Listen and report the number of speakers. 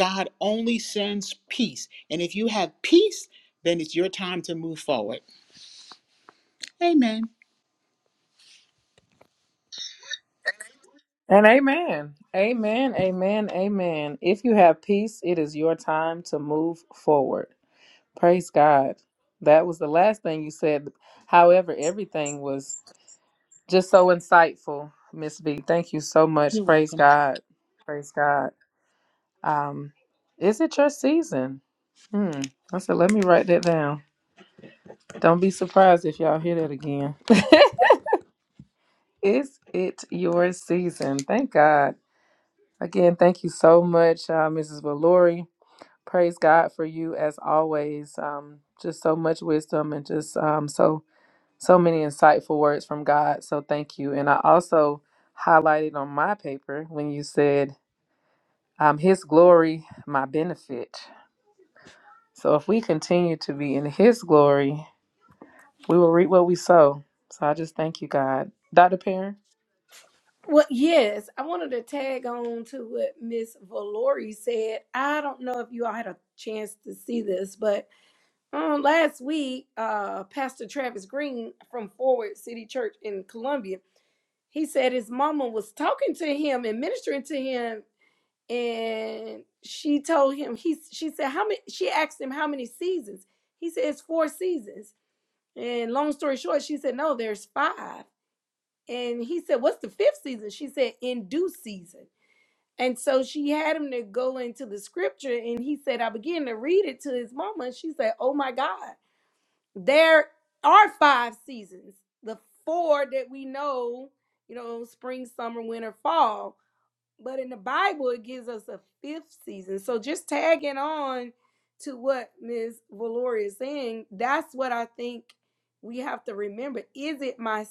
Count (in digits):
3